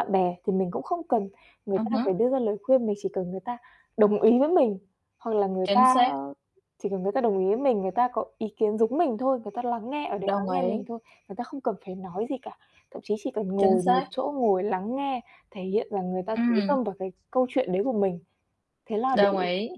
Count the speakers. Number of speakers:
2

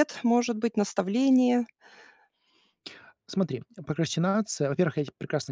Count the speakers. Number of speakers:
2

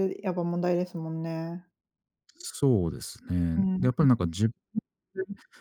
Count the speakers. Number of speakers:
2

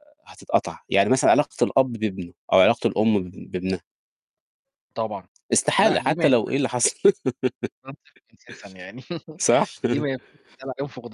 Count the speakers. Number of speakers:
2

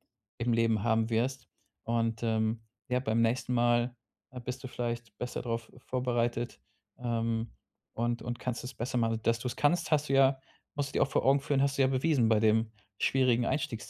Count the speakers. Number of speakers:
1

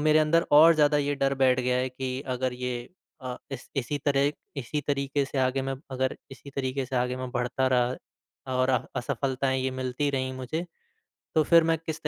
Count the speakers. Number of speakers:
1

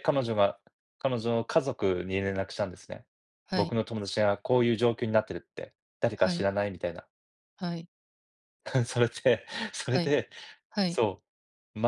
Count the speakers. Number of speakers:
2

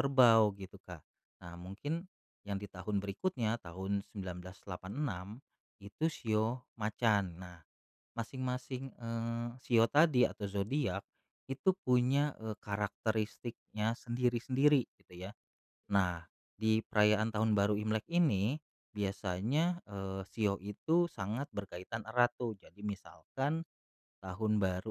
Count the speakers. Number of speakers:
1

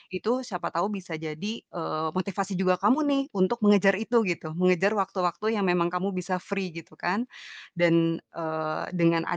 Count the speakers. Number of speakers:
1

